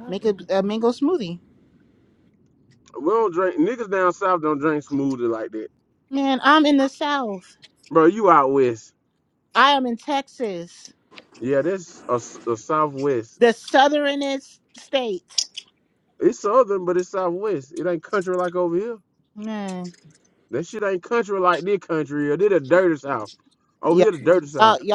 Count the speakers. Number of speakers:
2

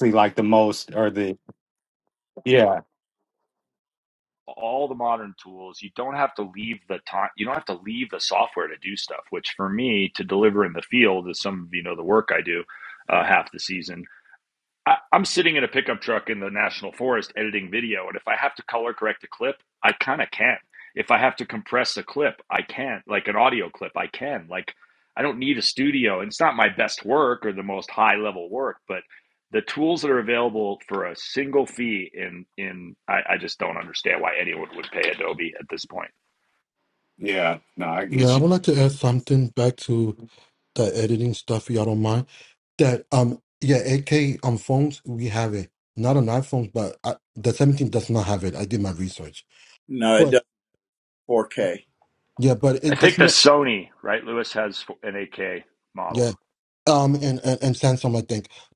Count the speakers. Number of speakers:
4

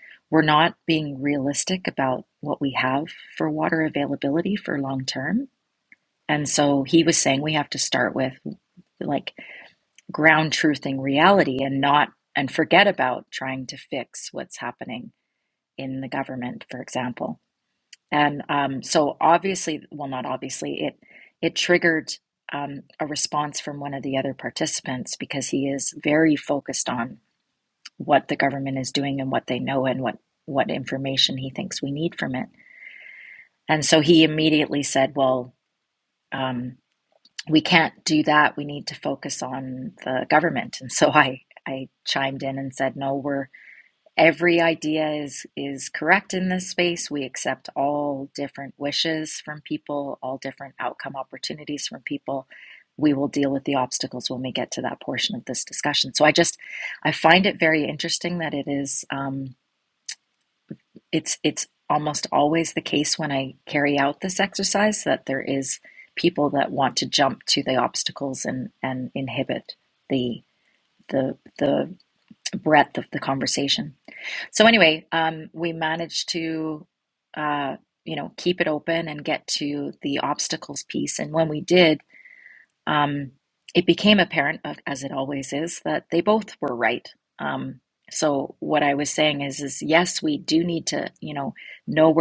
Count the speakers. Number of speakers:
1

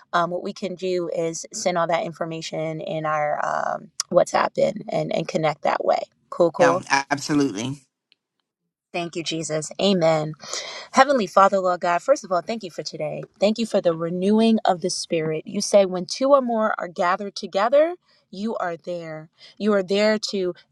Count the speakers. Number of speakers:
2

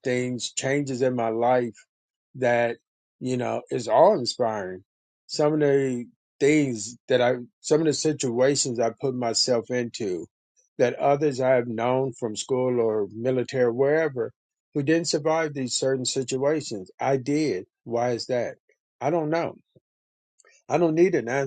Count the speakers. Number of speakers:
1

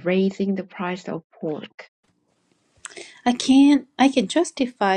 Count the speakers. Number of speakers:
2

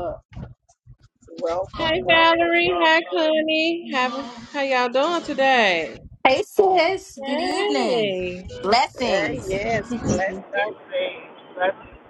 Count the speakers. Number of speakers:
4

